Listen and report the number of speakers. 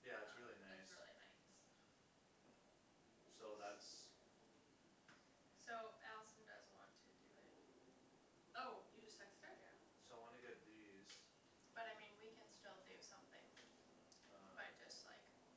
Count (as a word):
three